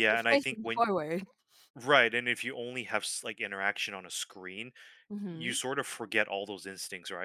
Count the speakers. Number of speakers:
two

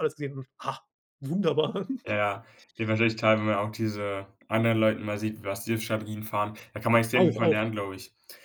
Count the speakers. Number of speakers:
two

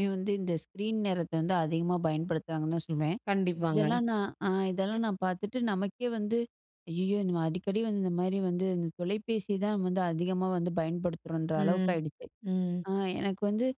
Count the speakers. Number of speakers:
two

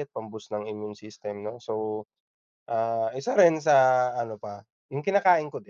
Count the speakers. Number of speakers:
one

